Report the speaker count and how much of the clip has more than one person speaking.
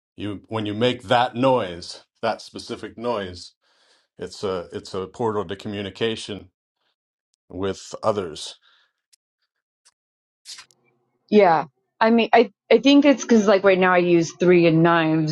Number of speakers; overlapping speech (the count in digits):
2, no overlap